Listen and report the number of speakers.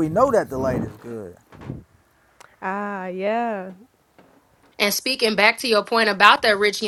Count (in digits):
3